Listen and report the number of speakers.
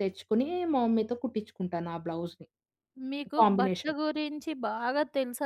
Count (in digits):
2